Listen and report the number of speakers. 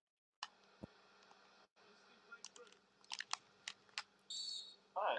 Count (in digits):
0